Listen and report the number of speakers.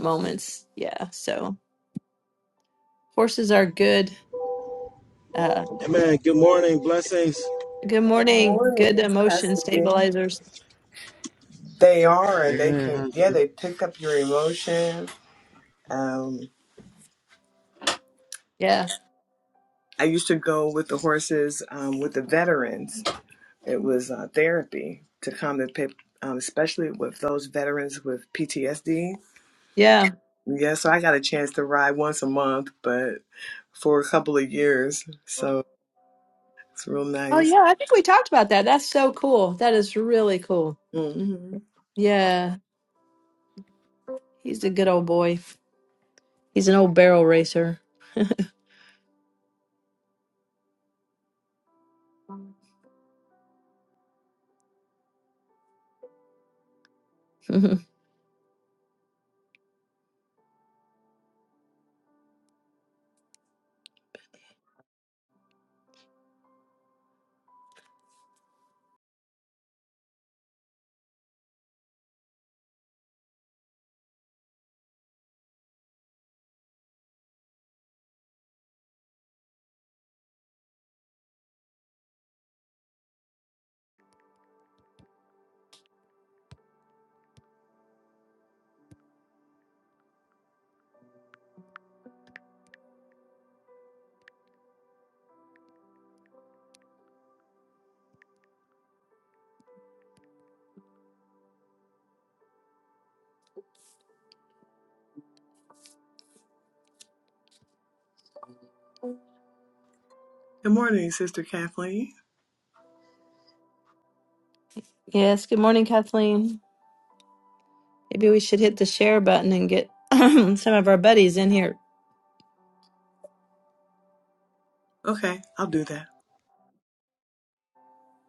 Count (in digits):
3